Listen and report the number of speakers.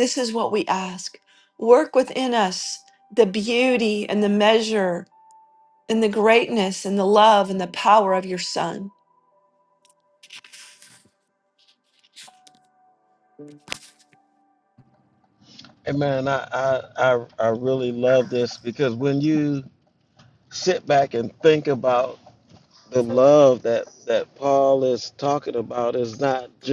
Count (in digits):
2